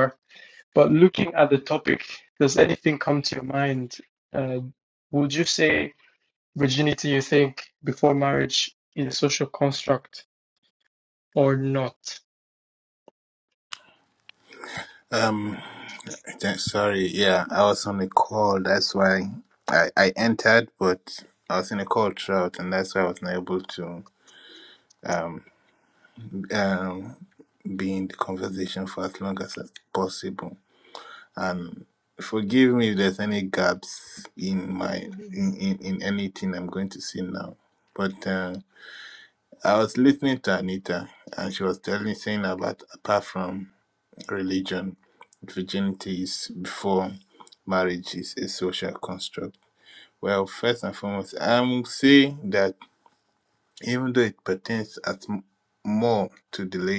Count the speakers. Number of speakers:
2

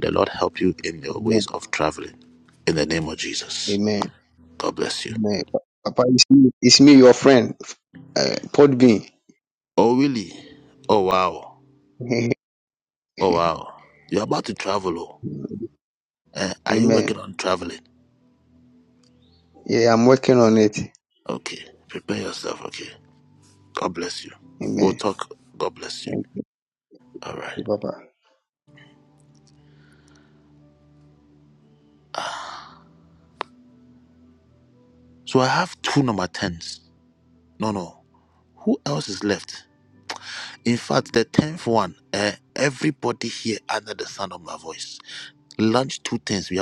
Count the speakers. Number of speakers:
2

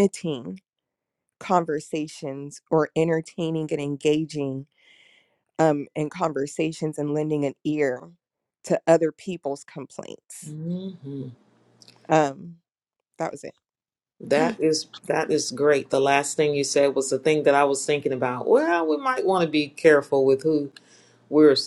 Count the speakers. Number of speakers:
2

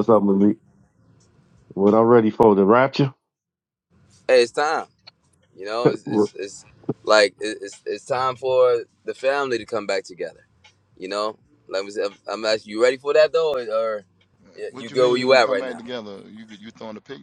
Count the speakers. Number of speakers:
3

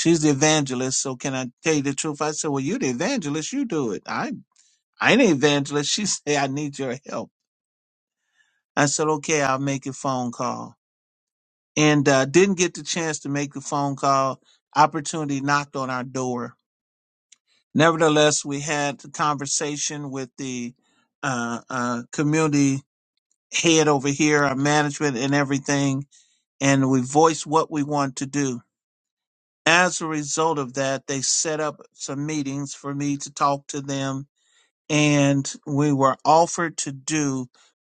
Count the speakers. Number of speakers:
1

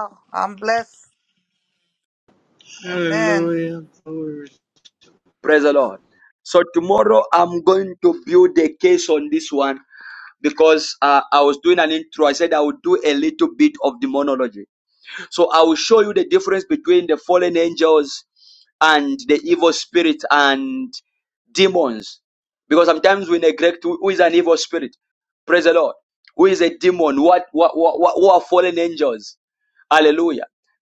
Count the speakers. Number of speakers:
3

